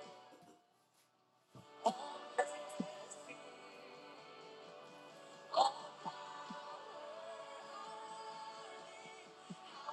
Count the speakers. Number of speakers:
zero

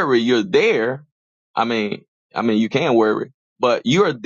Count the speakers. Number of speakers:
one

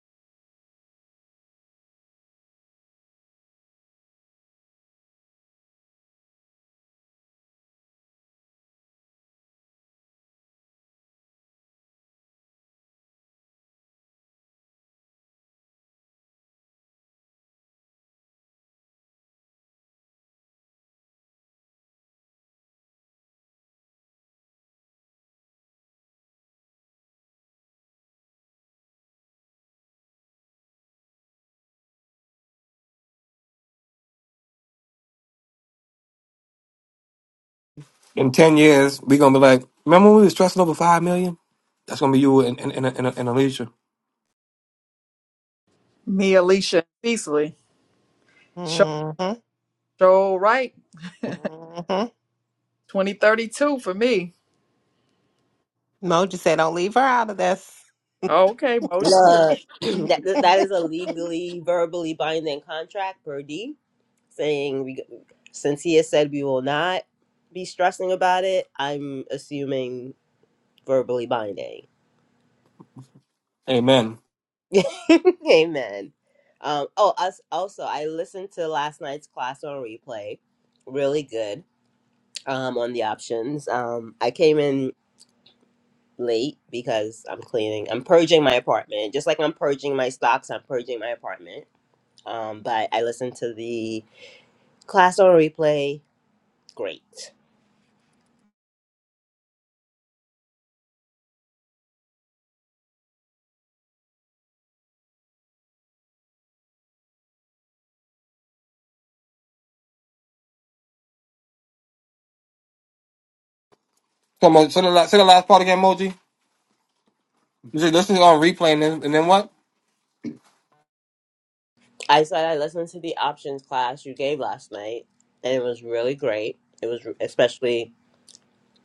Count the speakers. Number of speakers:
four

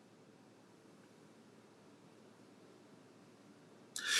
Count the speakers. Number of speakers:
zero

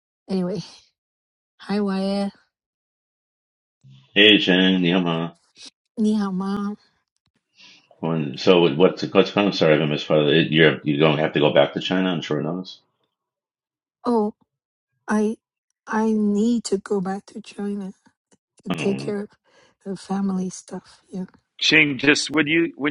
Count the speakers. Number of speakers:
three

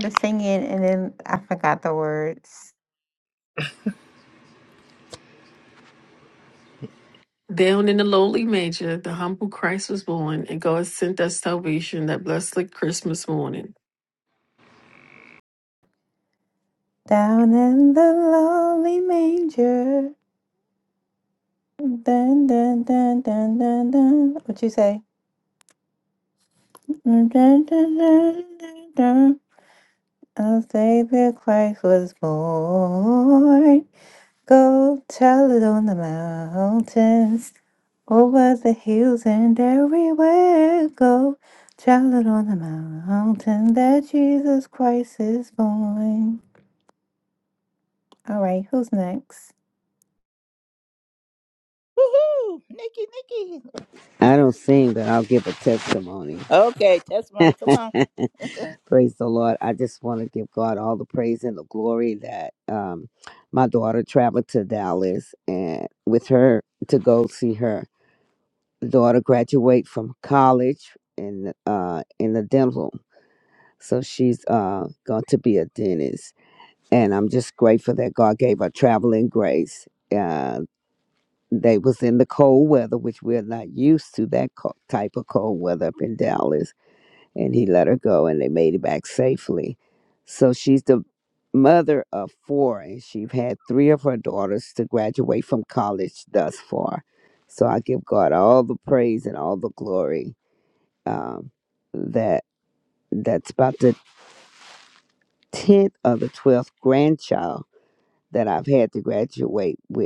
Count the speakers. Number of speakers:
four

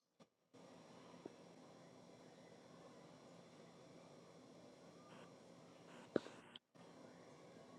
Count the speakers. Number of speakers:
zero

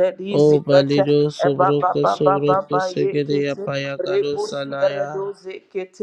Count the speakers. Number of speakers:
two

